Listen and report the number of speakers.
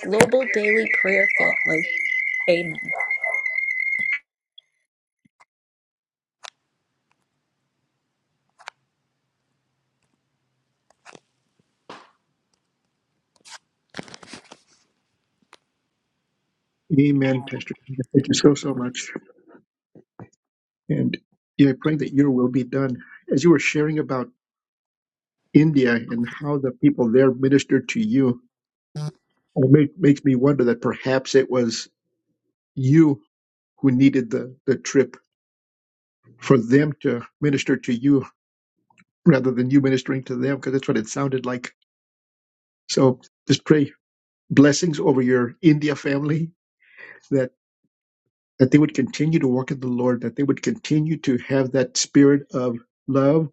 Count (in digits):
2